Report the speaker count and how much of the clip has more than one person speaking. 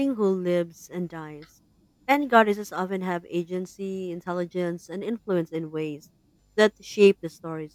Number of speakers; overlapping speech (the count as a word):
one, no overlap